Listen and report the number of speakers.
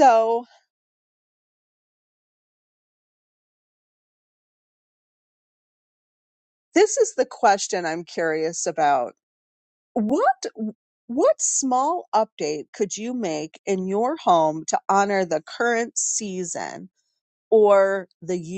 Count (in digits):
1